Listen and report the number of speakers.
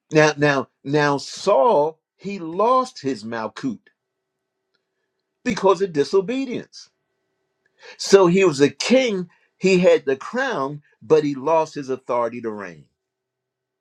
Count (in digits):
1